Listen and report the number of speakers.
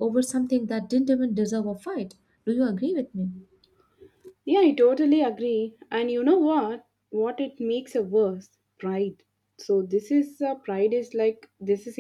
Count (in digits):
2